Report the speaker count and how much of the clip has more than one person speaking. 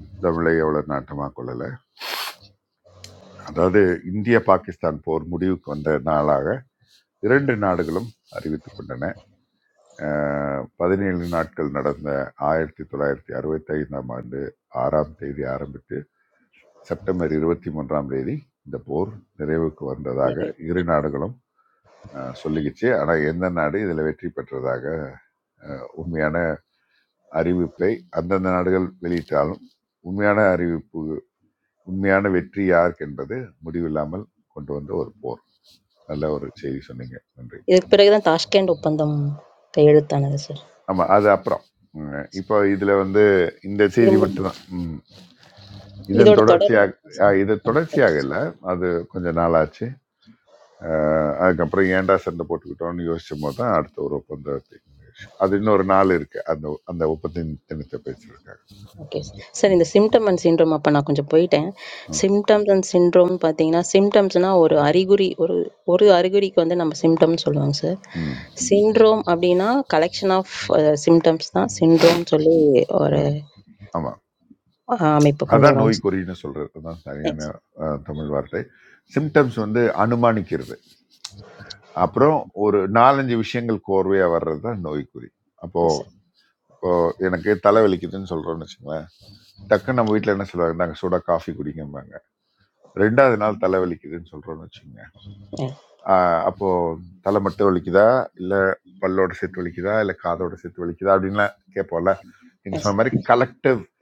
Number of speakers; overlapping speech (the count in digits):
2, about 3%